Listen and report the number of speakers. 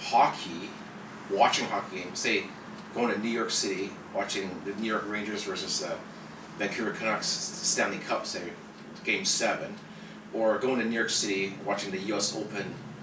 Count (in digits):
1